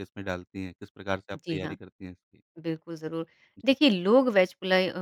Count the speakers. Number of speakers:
two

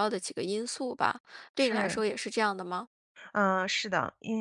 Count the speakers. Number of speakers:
two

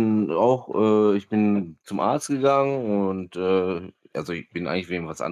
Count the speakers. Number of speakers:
one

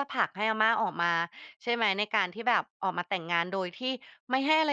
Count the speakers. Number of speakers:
one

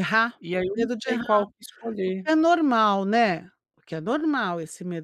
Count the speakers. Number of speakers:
two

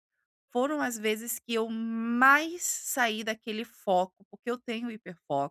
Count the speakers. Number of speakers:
one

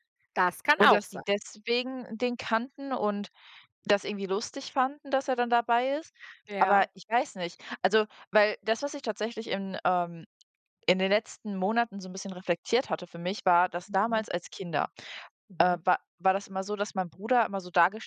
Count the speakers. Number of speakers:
two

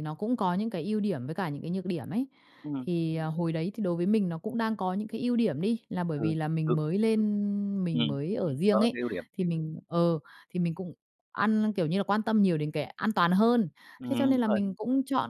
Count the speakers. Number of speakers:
two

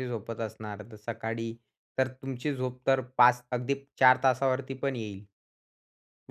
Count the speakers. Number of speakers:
one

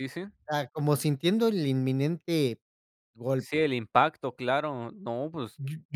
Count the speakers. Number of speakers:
two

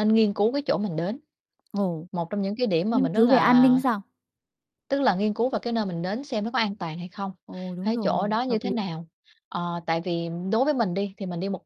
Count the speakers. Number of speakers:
two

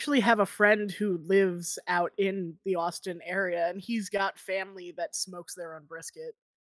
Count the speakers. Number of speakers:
one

